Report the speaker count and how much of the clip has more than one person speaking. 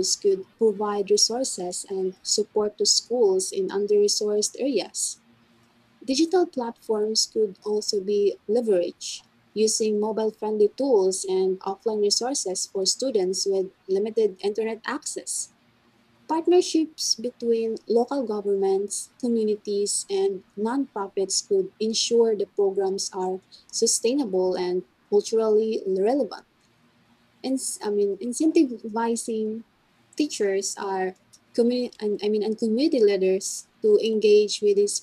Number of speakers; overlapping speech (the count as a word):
one, no overlap